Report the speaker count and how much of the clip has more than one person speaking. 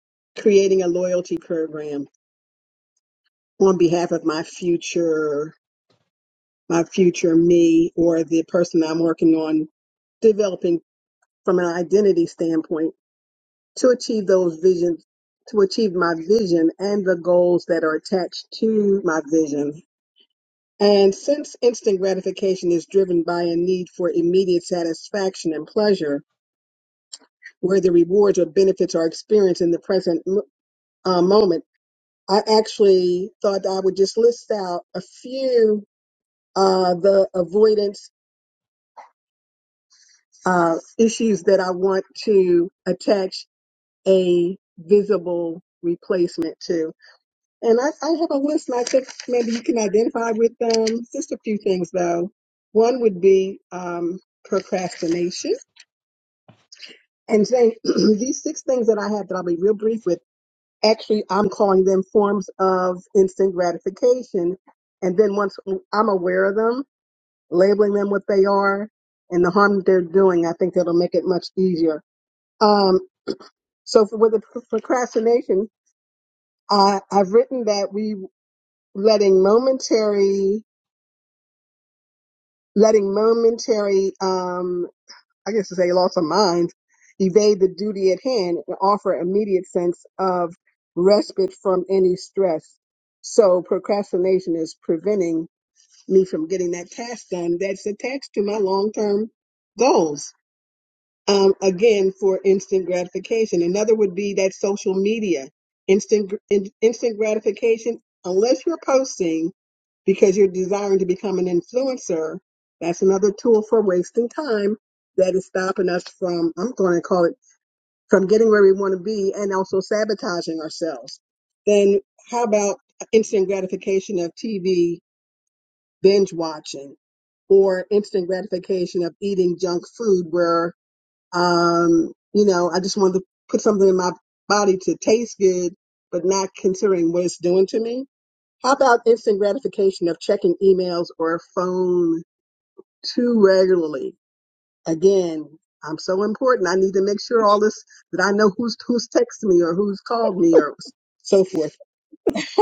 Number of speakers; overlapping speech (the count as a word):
one, no overlap